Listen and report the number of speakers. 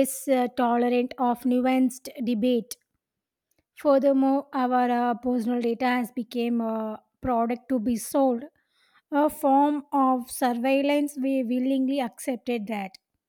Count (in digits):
1